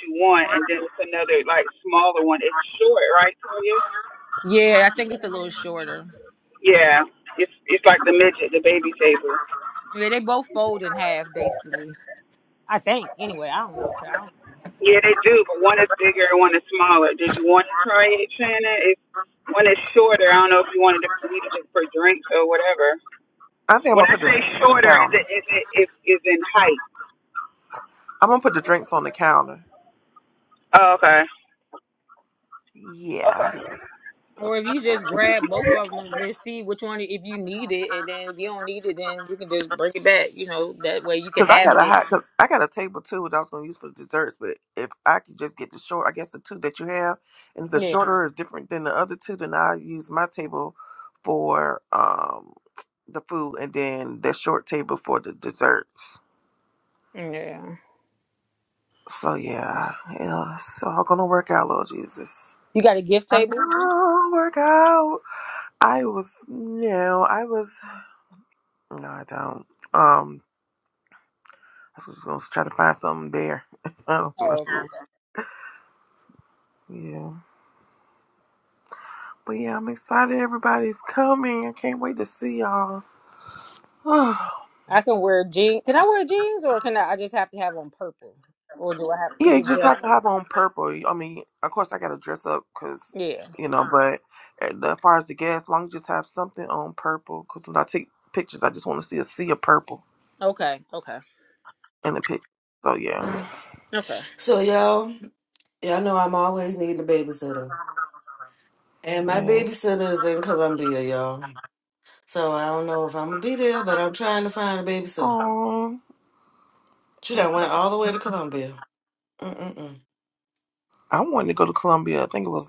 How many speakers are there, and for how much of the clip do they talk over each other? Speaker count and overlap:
4, about 3%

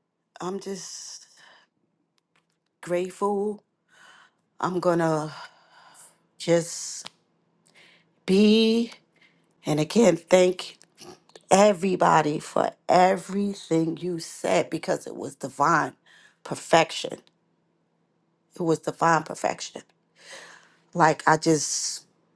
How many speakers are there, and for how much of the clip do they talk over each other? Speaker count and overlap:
1, no overlap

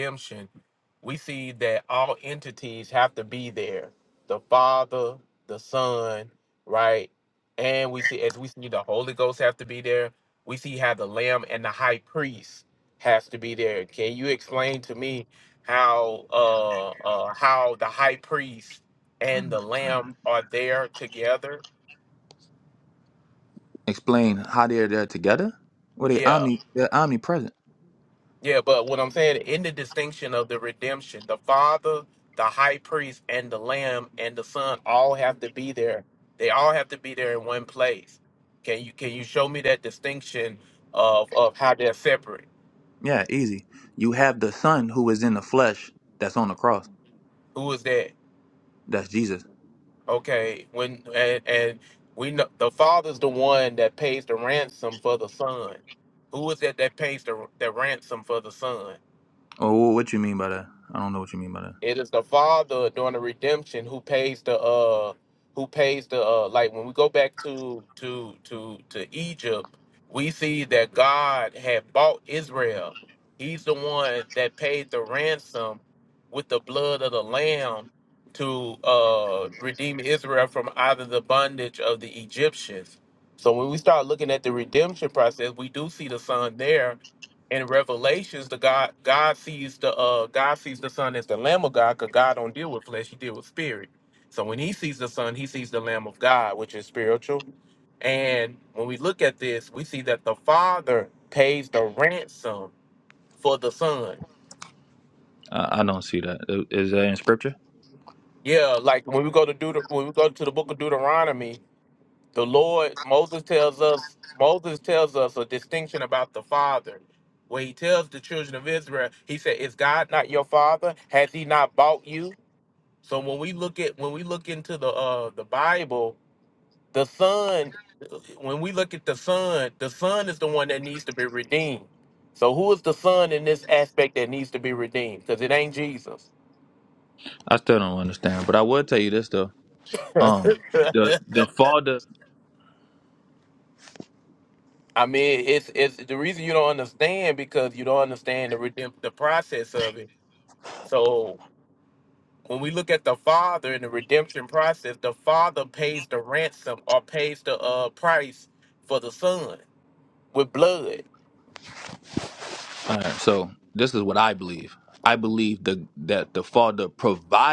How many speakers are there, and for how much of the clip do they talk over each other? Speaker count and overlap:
2, under 1%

